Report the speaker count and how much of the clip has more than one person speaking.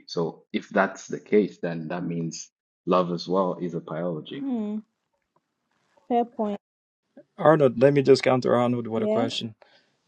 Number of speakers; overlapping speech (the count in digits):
3, about 4%